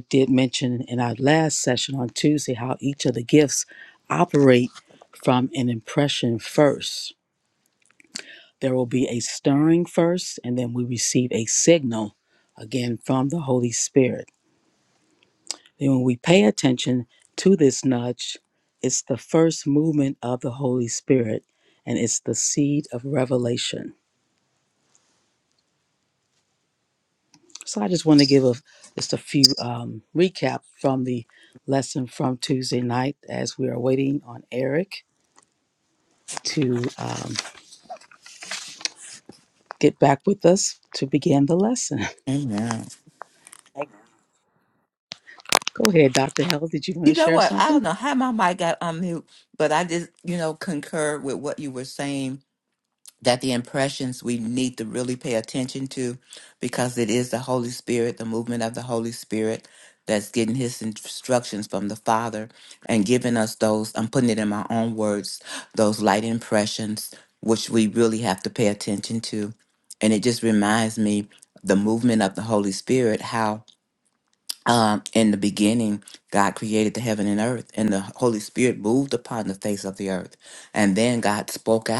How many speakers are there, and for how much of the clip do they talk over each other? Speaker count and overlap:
2, about 1%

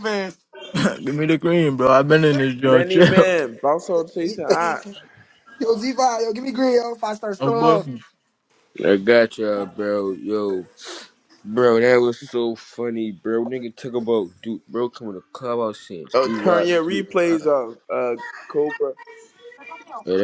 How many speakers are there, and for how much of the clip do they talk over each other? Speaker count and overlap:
4, about 15%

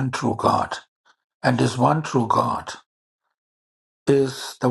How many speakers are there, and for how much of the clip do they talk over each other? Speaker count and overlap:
1, no overlap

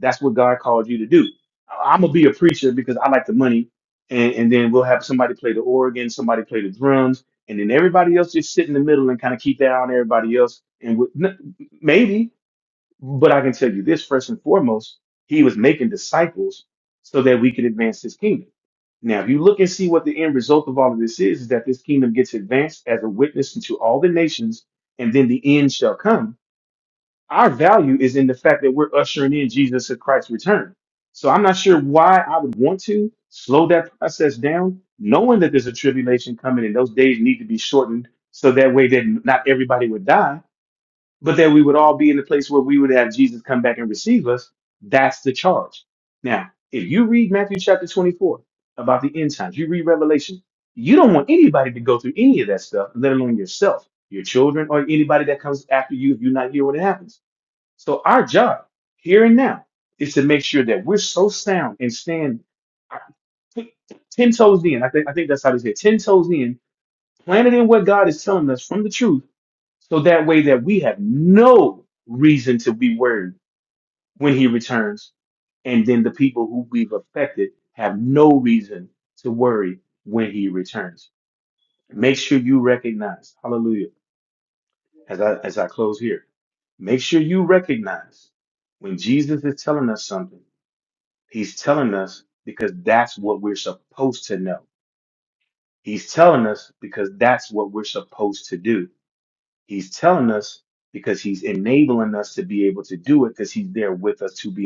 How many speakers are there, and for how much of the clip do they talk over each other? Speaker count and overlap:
1, no overlap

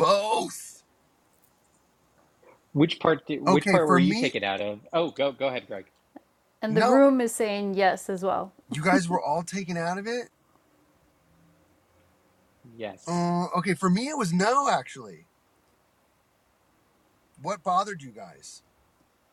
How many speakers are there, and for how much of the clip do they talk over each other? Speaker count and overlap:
3, about 6%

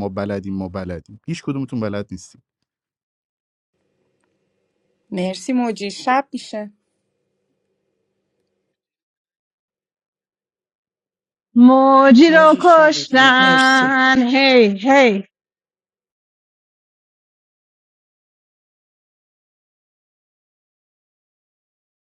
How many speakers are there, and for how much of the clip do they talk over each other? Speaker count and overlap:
3, about 6%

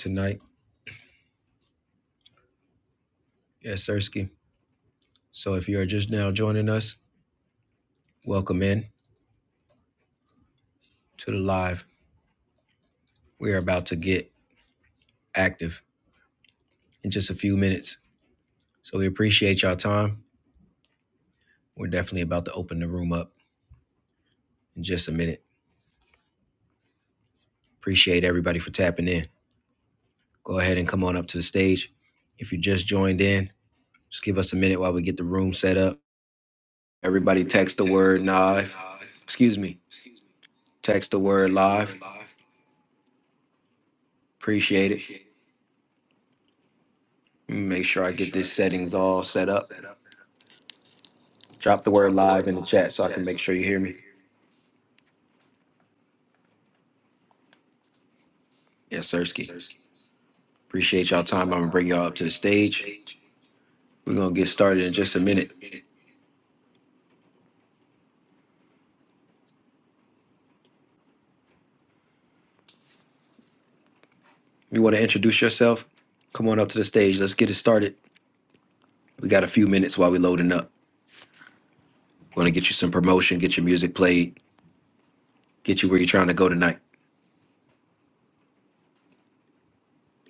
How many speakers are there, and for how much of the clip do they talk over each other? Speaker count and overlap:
1, no overlap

